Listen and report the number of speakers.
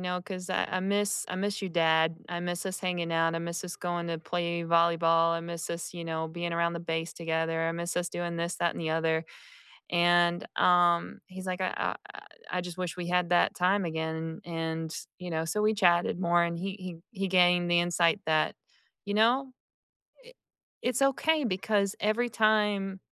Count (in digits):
1